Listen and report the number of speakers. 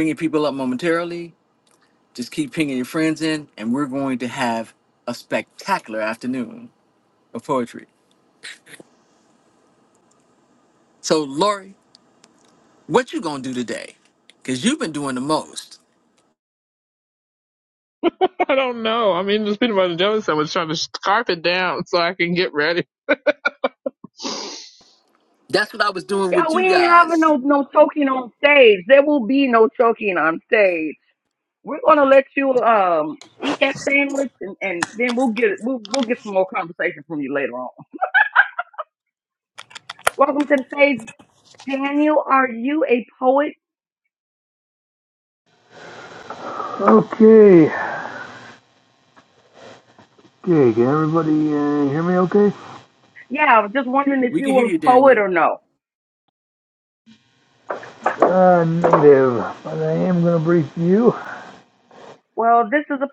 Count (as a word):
four